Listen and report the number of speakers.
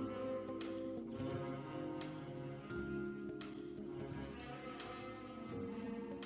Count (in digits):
0